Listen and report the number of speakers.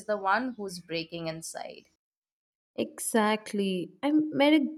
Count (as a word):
two